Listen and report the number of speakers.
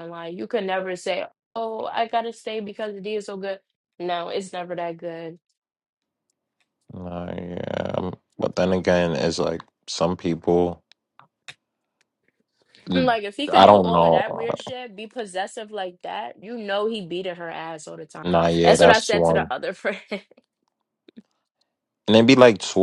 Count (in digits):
2